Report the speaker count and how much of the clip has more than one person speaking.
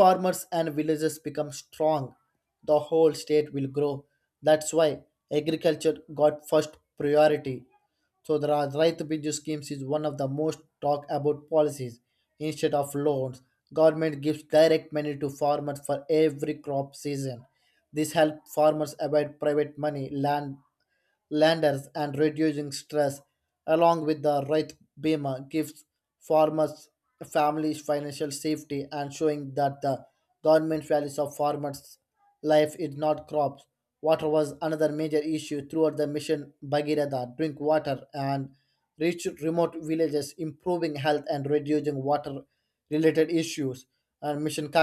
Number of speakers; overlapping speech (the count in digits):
1, no overlap